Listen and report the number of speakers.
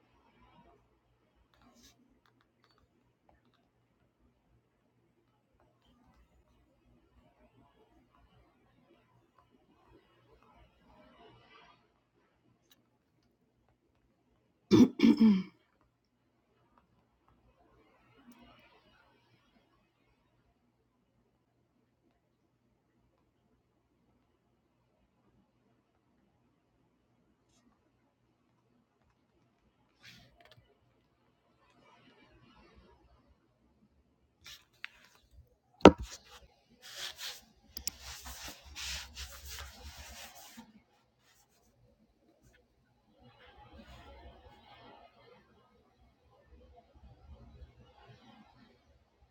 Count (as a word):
zero